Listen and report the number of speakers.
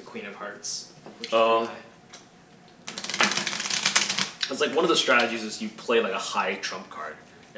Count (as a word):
two